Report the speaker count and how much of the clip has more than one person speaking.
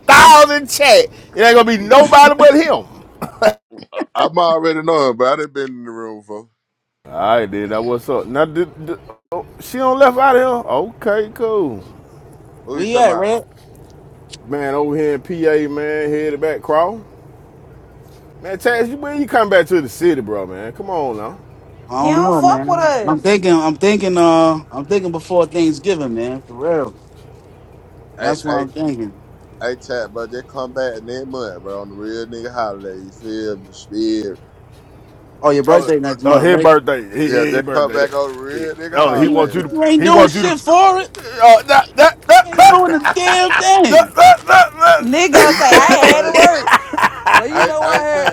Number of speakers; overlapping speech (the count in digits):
4, about 16%